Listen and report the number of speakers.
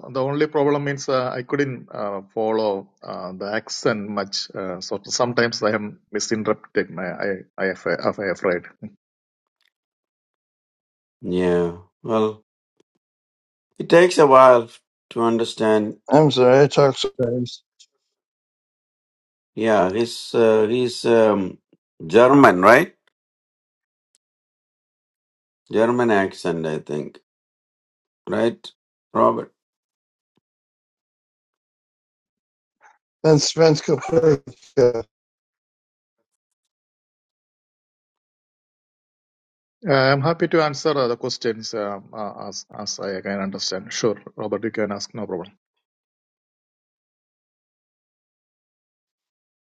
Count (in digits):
3